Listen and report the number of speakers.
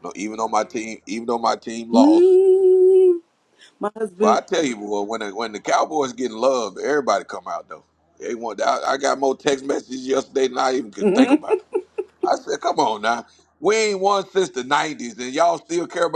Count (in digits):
2